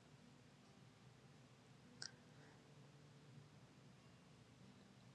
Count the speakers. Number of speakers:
zero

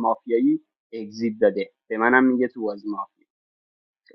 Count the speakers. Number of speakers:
one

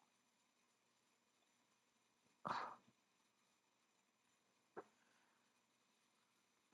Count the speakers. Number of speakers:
zero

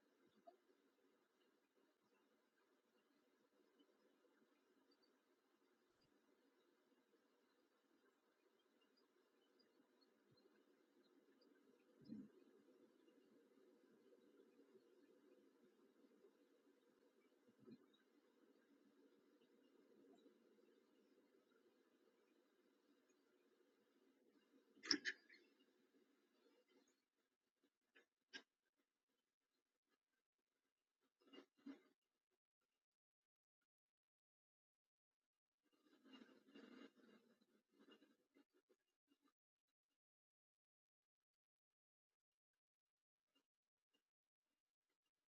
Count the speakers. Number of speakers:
zero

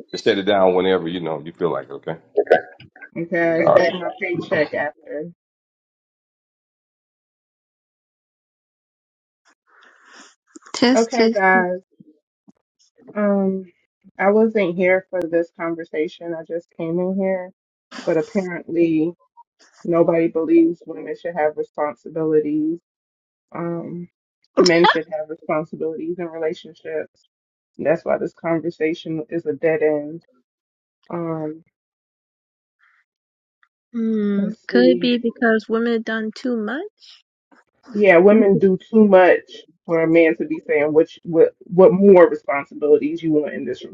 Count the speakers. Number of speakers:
three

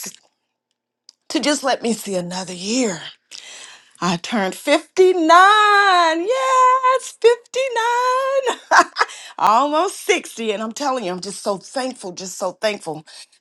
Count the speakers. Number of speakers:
one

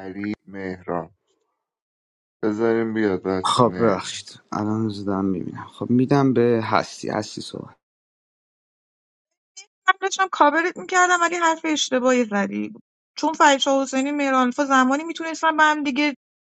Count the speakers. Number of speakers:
three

